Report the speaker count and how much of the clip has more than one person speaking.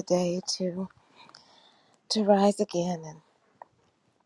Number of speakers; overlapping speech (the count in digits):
1, no overlap